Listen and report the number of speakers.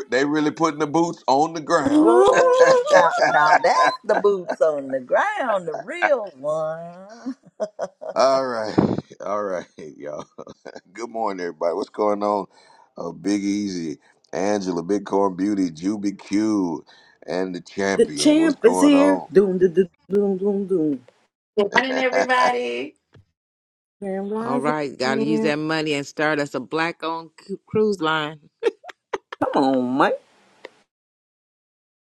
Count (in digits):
5